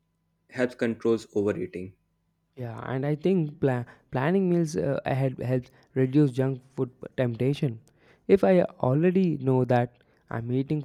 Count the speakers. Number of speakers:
two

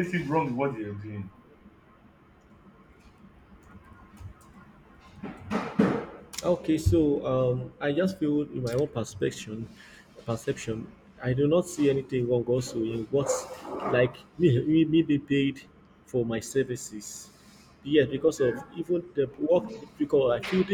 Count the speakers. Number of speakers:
two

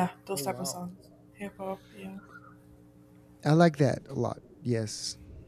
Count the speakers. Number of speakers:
two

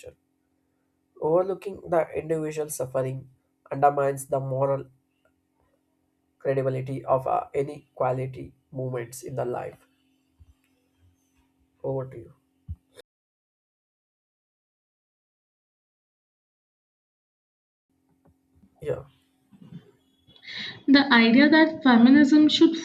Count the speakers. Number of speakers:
two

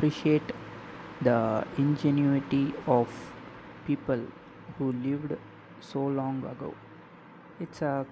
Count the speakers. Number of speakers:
one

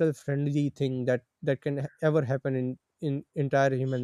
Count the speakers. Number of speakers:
one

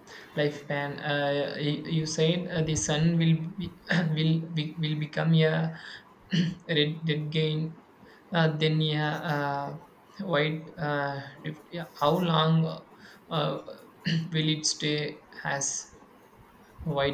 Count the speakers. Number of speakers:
one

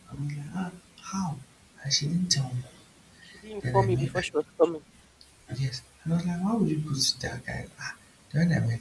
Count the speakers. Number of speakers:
two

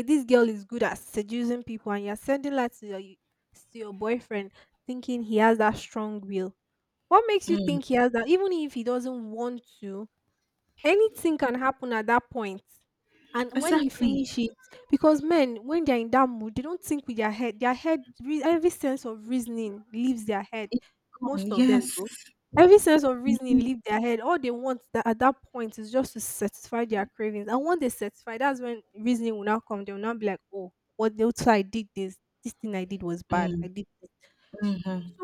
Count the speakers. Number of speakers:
two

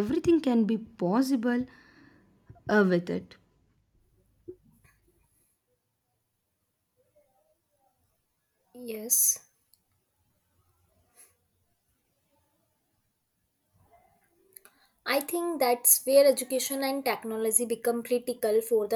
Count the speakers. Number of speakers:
two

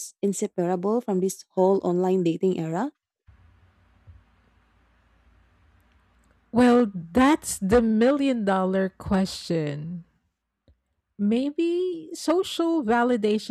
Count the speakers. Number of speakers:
two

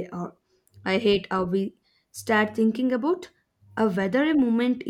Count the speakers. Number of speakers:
one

